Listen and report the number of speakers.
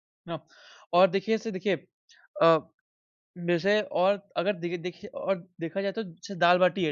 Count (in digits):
1